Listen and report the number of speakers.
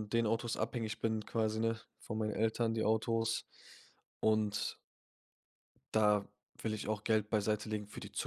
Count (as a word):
one